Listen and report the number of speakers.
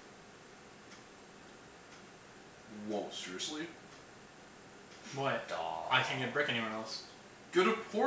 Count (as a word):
three